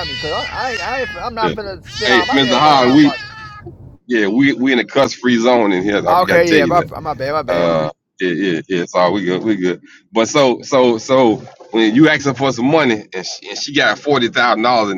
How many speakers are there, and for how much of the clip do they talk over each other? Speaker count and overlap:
2, about 15%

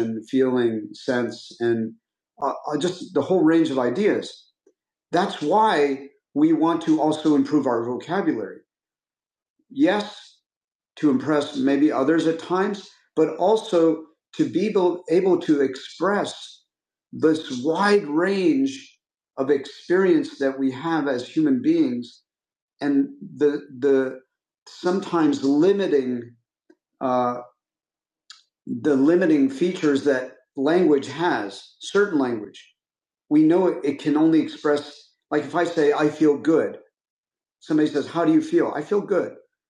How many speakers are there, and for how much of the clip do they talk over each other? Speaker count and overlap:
1, no overlap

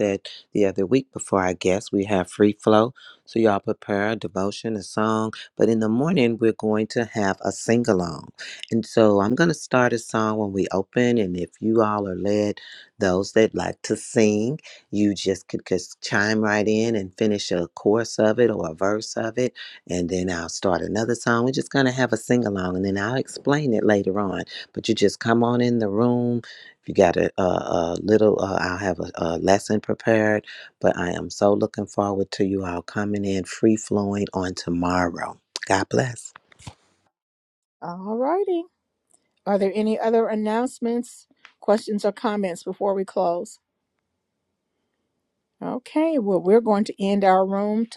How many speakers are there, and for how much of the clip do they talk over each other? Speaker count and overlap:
2, no overlap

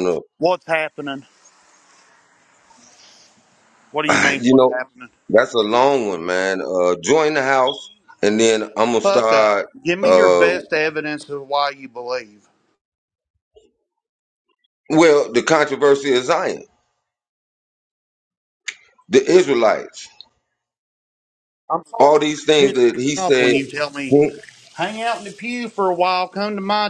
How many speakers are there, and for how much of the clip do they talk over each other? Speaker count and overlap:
2, about 12%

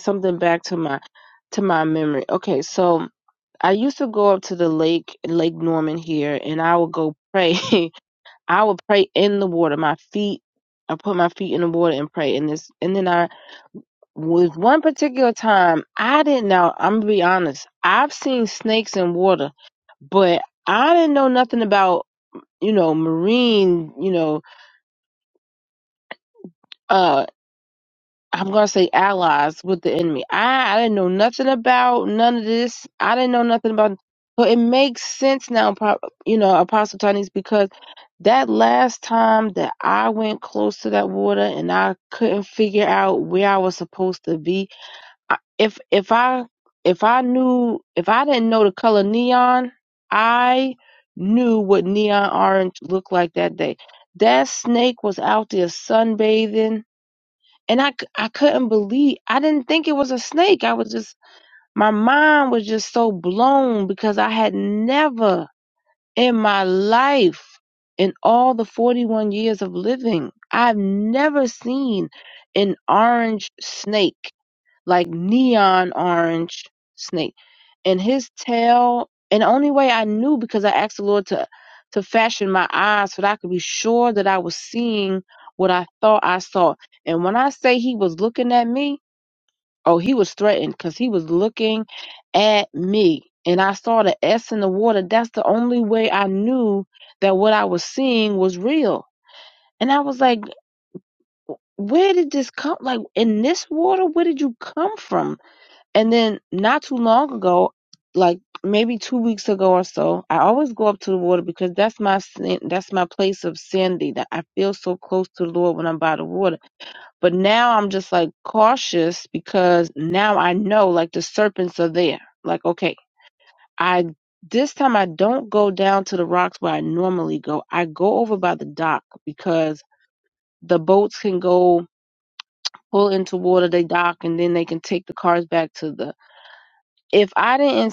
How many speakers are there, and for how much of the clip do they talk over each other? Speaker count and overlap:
1, no overlap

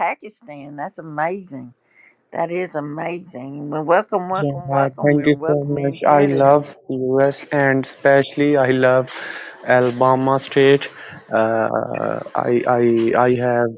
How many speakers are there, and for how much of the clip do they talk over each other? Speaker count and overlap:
2, about 17%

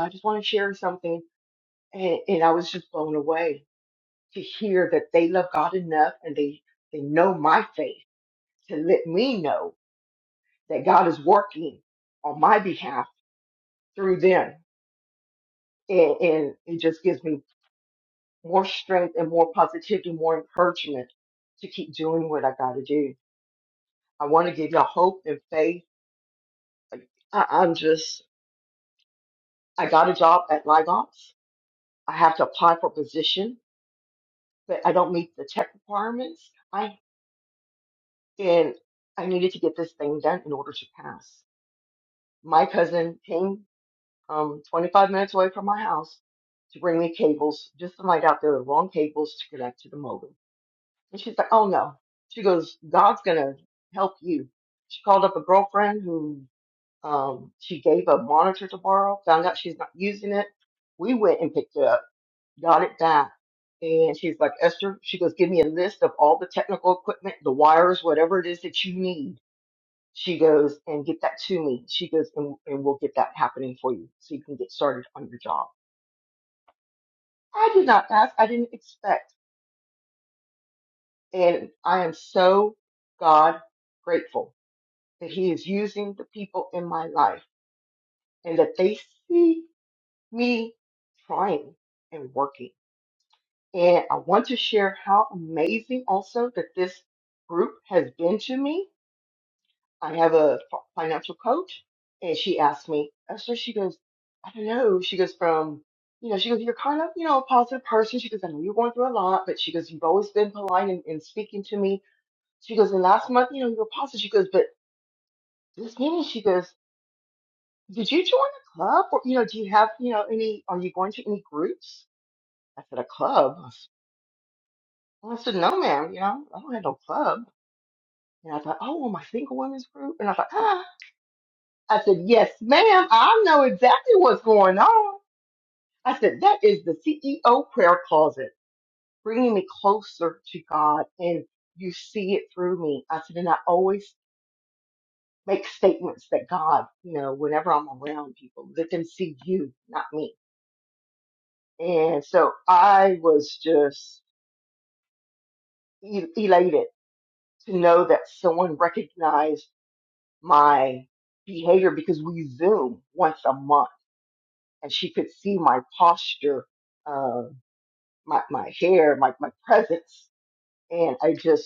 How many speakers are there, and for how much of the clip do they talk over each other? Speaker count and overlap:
1, no overlap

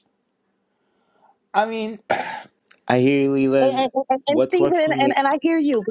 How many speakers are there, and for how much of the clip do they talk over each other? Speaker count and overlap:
2, about 21%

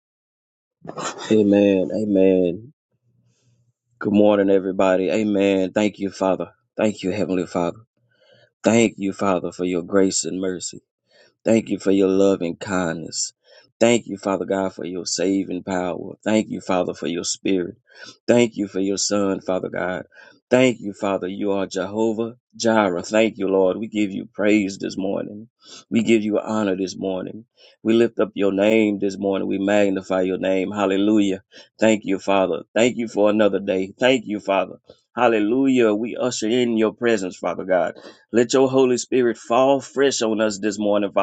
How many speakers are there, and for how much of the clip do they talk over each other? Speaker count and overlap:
1, no overlap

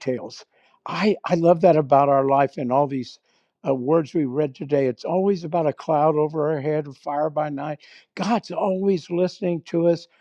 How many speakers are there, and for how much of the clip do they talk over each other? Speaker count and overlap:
1, no overlap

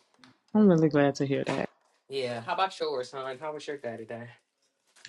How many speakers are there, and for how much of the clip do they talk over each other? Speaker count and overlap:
2, no overlap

